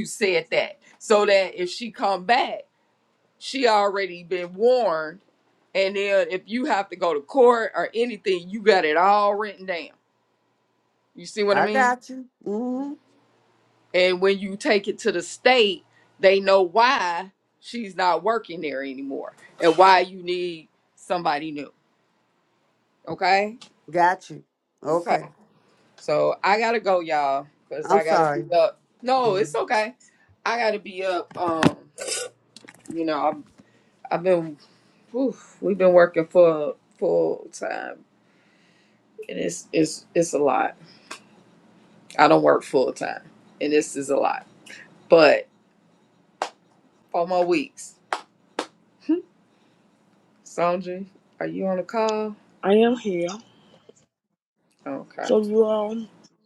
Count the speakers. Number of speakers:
three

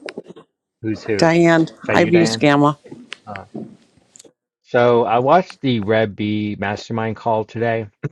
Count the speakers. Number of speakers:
two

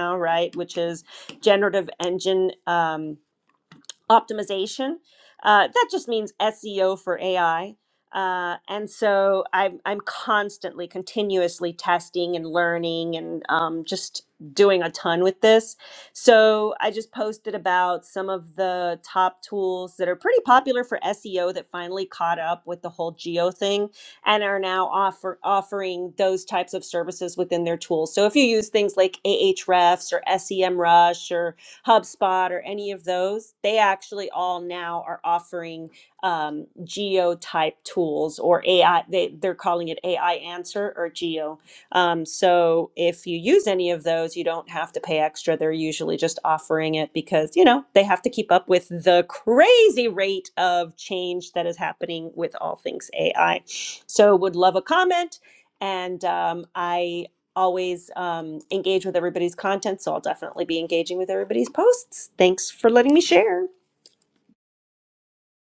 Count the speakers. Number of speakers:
one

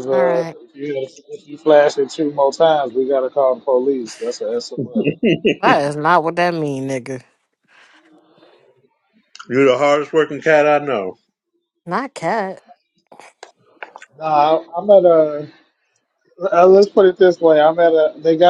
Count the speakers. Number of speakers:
three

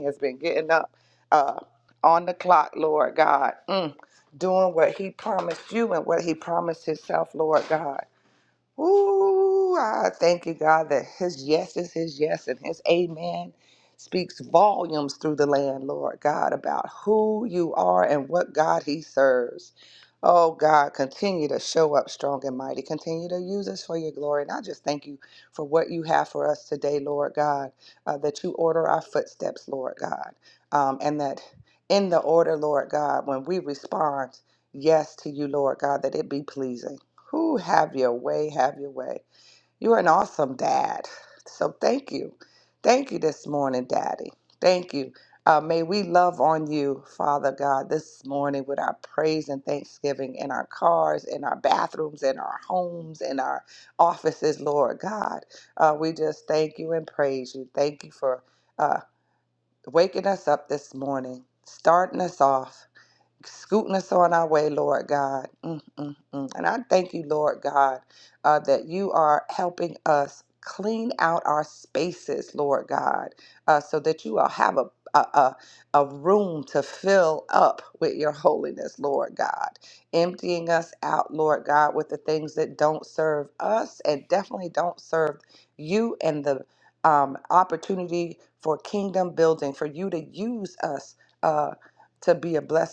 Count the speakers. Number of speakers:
one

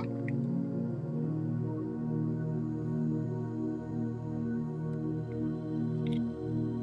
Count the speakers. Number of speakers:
zero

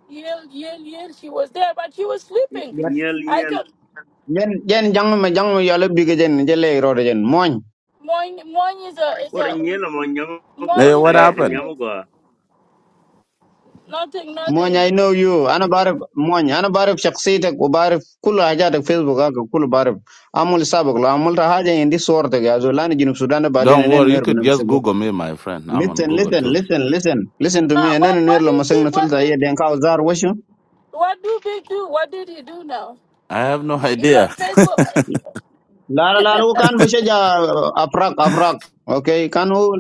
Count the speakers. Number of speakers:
four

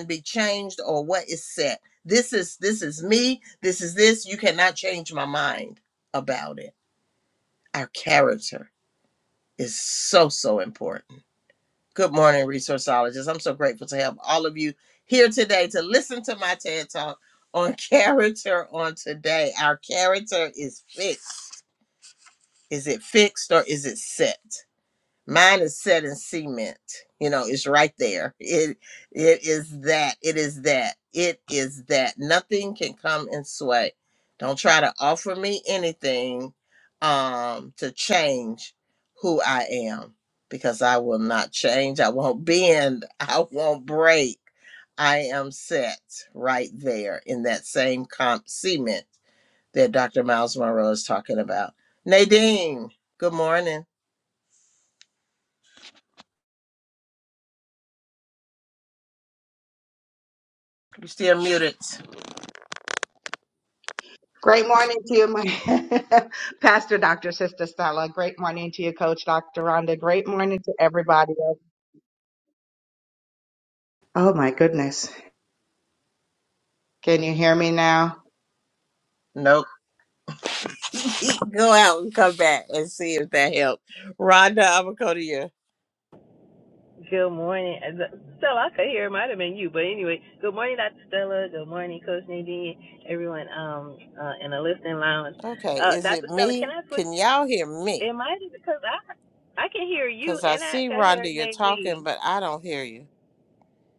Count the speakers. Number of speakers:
three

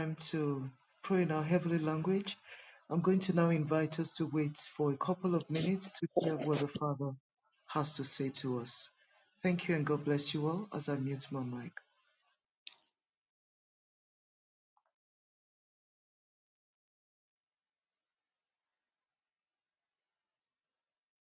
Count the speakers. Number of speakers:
one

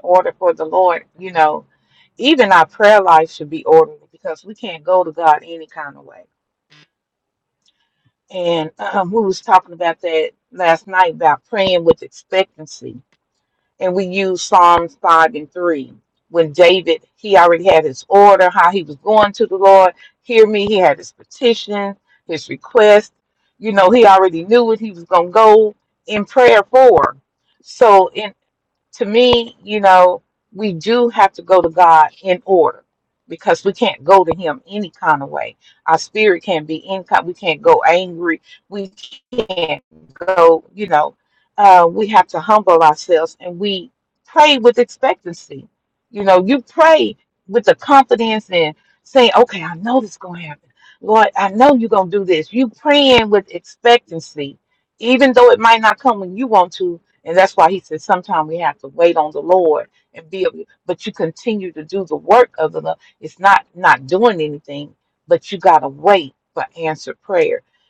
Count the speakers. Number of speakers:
one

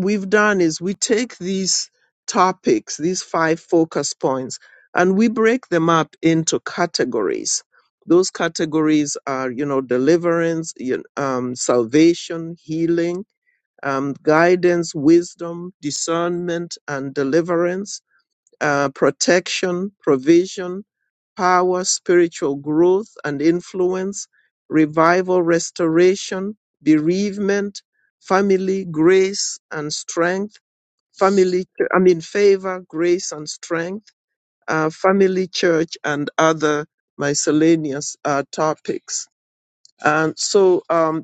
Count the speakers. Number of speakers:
one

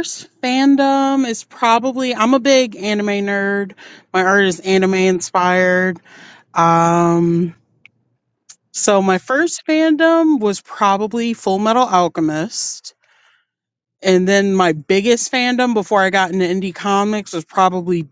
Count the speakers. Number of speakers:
one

